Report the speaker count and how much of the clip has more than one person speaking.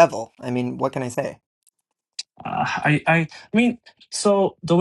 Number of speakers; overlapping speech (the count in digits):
2, no overlap